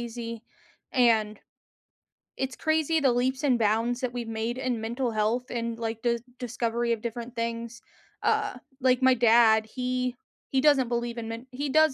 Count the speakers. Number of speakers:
one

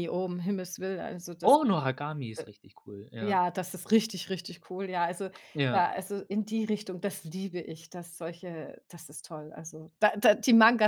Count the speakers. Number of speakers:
two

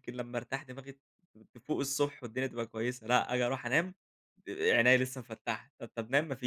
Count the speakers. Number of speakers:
one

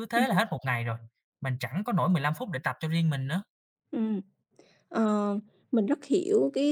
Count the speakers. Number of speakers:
two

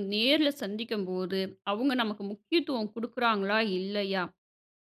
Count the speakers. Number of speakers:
one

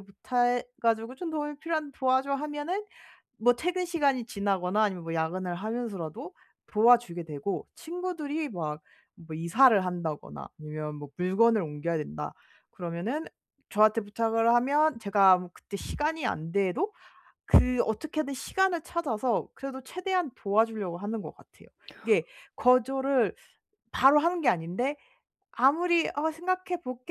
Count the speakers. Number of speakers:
one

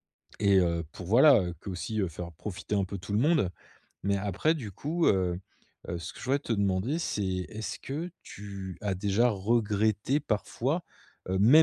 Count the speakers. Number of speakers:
one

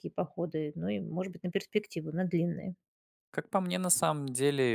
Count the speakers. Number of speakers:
two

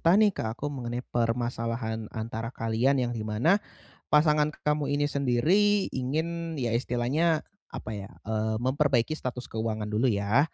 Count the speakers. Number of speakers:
one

